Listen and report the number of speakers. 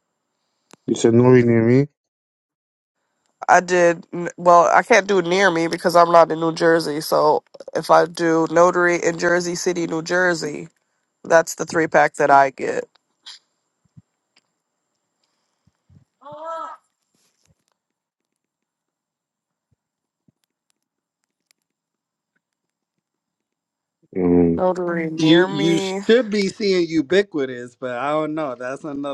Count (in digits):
3